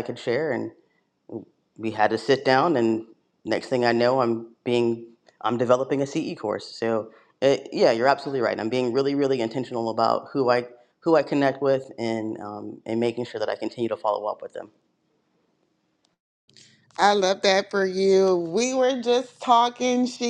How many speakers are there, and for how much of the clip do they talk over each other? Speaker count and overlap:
2, no overlap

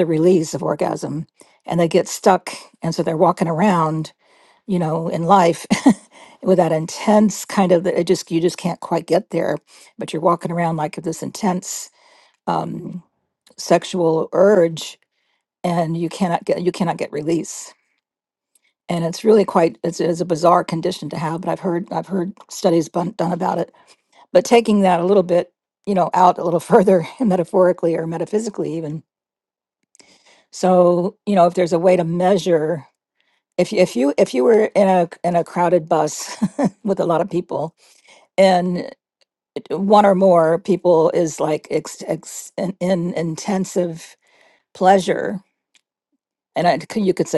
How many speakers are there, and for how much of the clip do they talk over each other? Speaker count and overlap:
1, no overlap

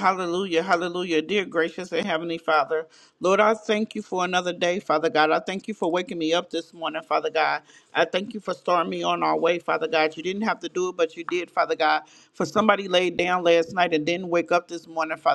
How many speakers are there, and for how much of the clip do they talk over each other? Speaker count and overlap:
1, no overlap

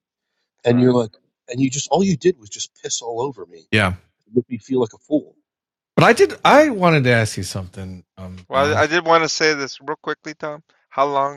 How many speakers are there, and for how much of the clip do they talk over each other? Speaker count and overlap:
3, about 7%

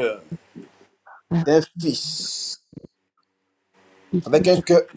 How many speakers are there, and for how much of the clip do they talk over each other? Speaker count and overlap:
1, no overlap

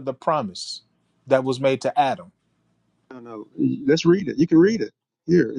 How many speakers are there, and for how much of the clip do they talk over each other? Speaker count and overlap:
2, no overlap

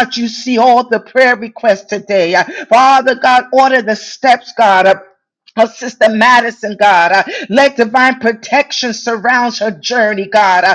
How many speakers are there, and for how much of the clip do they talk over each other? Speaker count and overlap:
1, no overlap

